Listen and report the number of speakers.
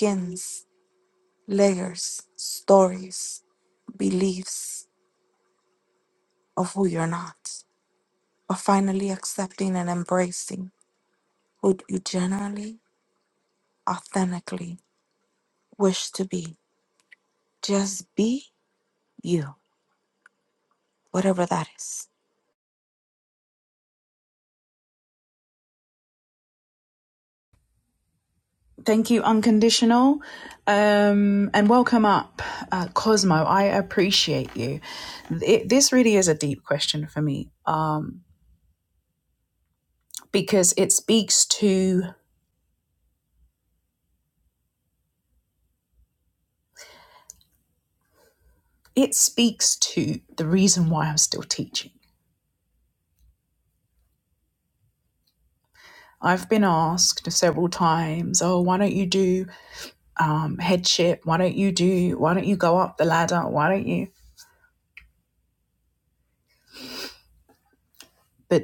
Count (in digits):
2